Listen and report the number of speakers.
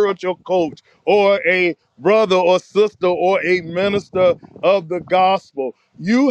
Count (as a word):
one